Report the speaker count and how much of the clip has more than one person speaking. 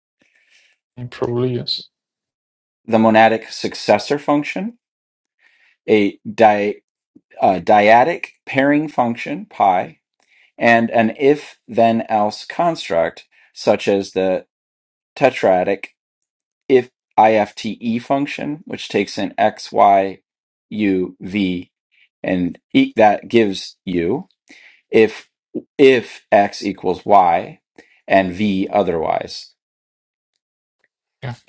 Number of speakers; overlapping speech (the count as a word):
two, no overlap